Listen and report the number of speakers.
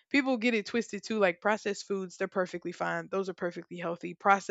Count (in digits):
1